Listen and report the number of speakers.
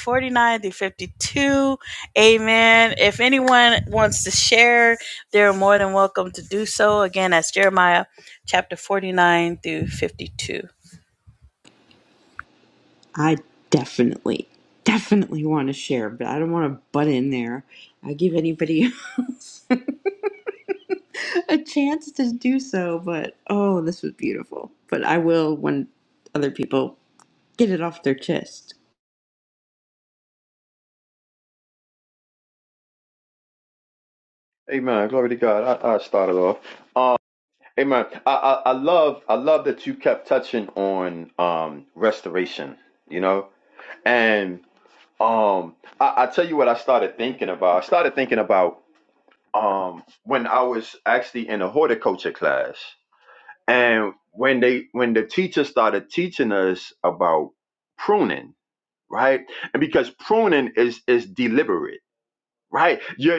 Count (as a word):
three